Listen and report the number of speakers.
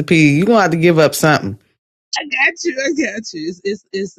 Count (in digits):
2